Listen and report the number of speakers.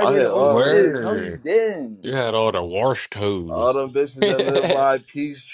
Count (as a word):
three